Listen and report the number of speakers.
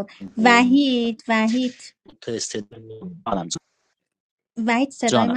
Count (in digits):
2